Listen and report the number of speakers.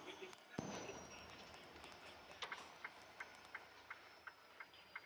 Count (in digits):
0